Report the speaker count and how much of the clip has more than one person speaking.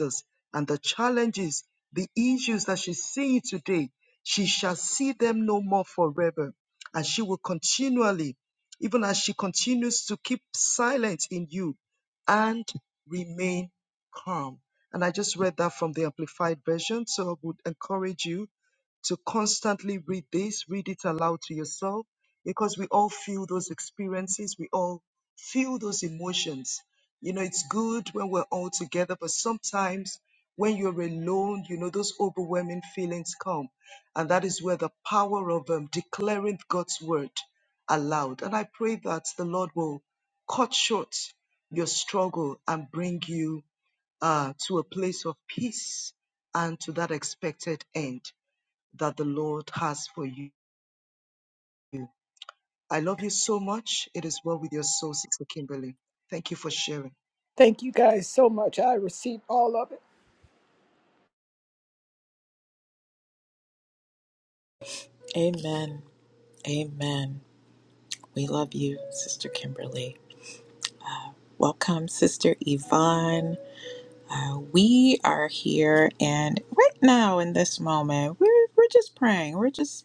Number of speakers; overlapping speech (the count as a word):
three, no overlap